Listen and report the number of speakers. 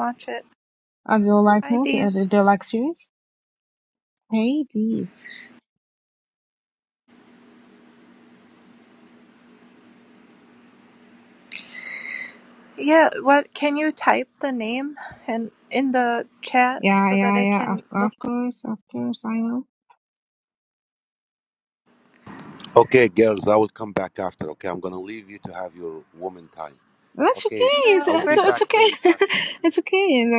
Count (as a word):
three